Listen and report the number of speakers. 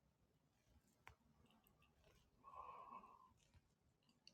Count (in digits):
0